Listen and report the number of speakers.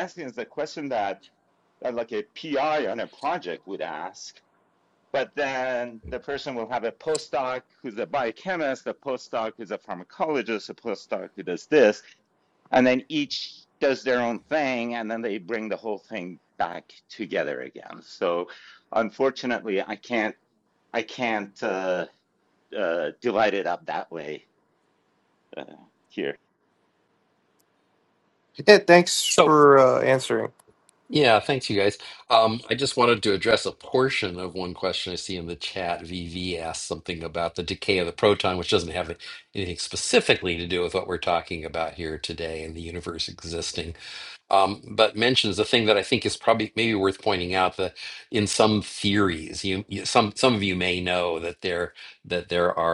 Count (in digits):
3